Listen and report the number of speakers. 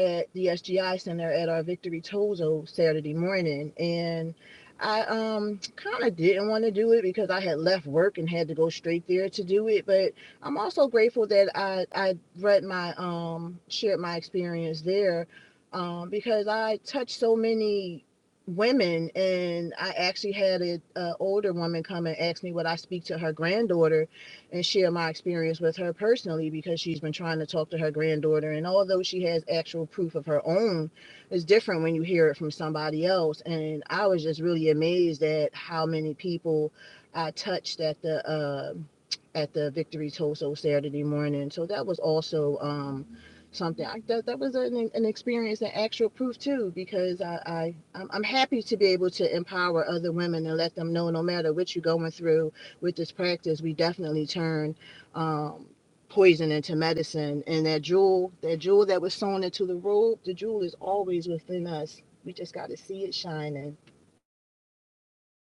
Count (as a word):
one